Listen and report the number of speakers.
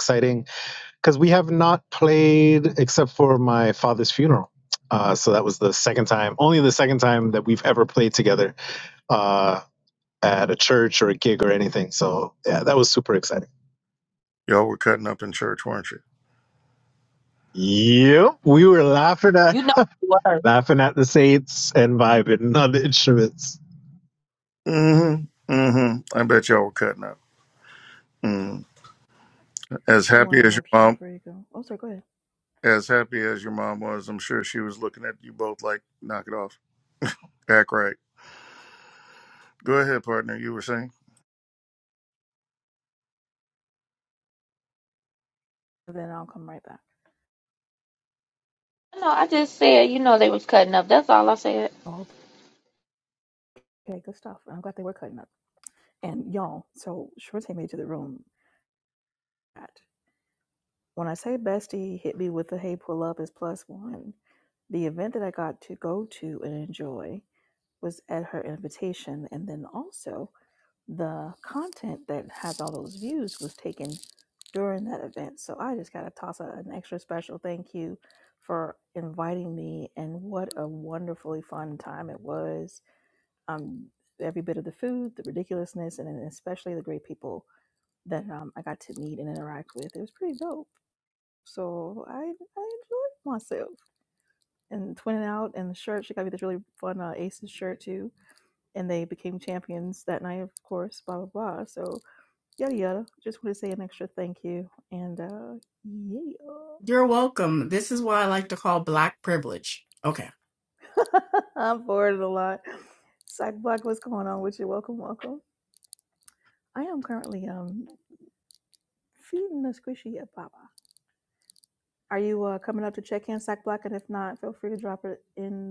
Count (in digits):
5